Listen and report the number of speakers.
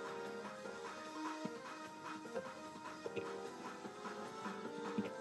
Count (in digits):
0